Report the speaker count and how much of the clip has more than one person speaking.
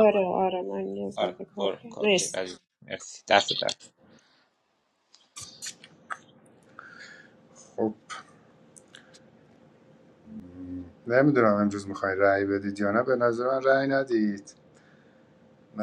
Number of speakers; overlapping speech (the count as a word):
three, about 8%